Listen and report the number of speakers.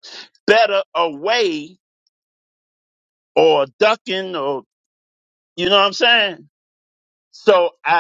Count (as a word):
one